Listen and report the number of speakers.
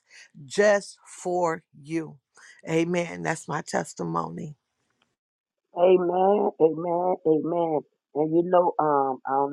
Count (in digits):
2